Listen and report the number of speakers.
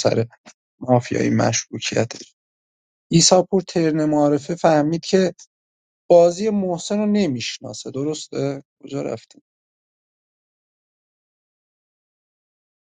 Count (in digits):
1